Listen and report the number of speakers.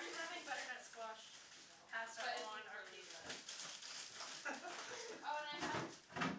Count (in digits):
2